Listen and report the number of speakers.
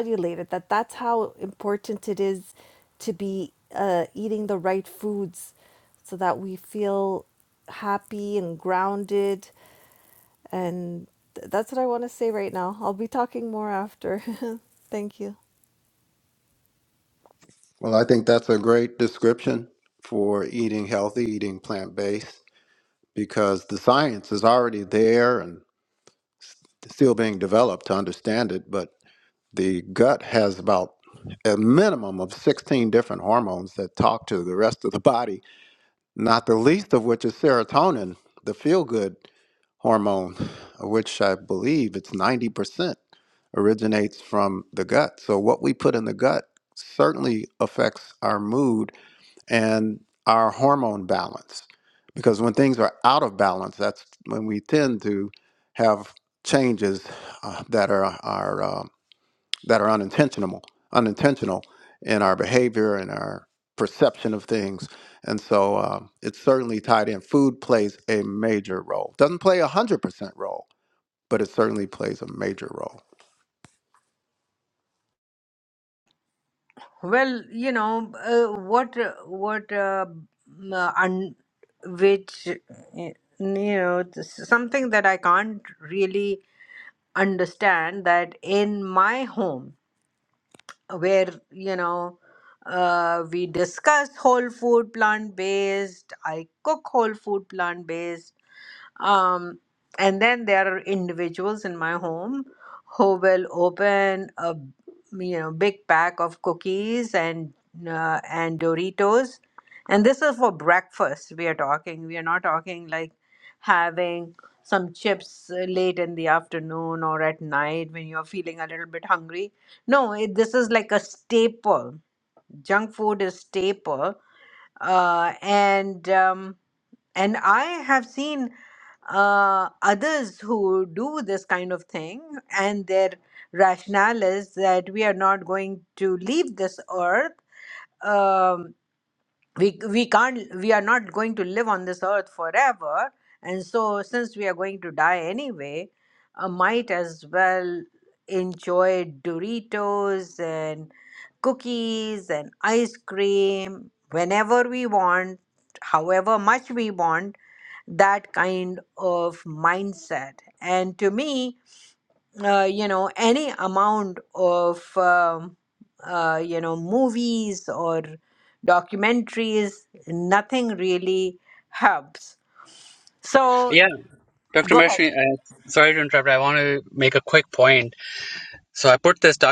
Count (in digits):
4